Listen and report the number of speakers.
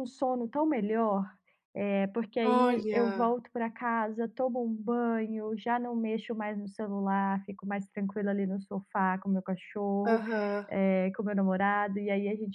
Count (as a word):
two